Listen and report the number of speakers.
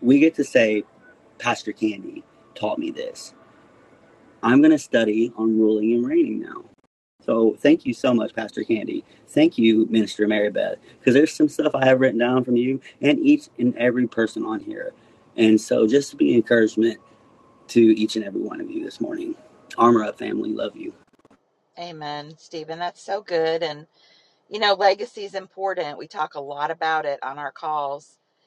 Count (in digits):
2